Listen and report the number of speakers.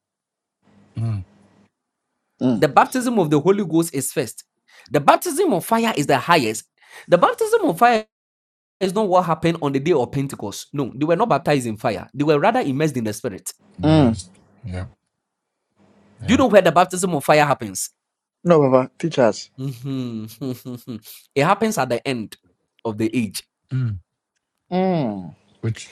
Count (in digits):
3